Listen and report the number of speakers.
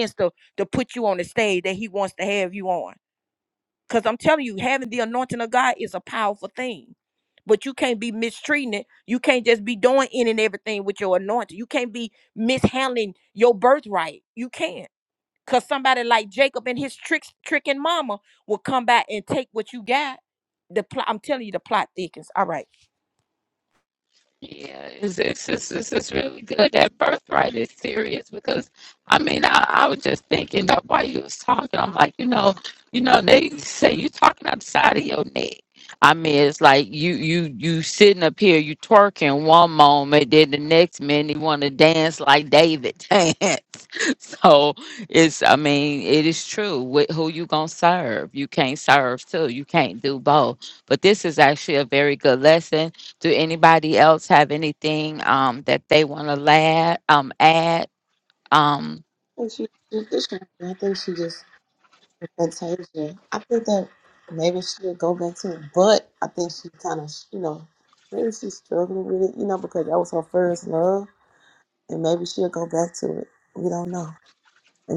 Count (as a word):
three